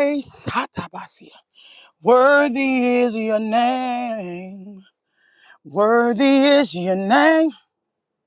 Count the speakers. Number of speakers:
one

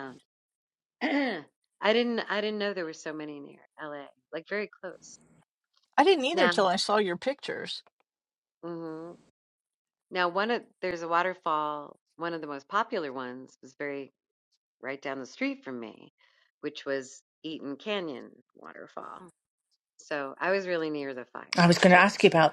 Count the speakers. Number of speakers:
three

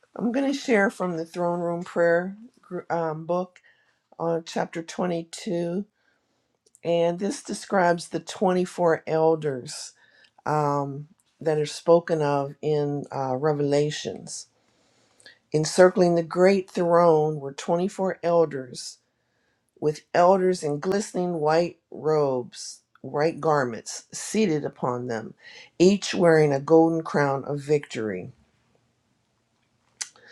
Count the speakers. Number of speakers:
one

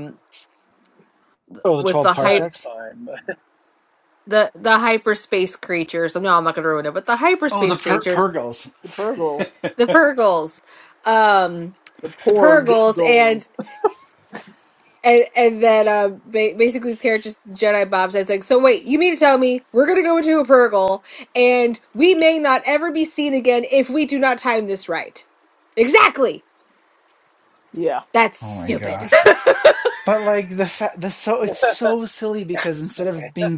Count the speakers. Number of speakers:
four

